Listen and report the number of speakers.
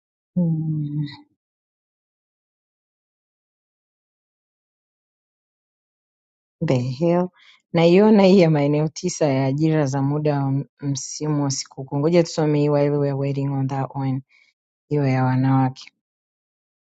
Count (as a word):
one